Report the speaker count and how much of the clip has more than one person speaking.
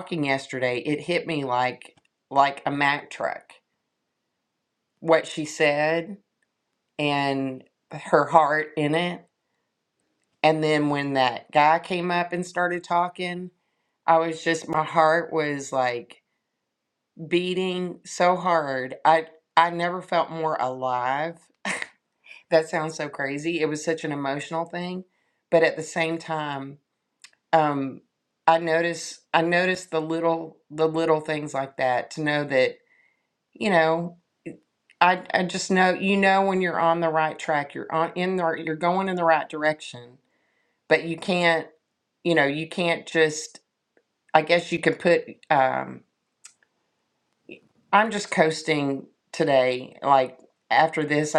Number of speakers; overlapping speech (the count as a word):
one, no overlap